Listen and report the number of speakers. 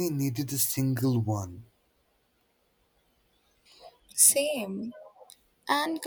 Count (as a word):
two